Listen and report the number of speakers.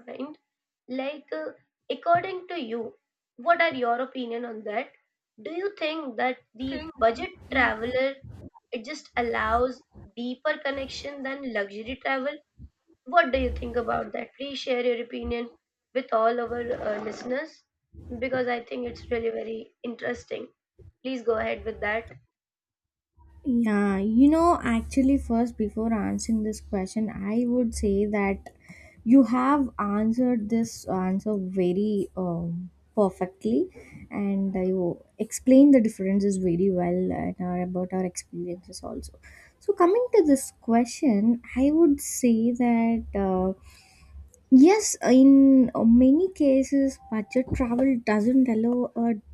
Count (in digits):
2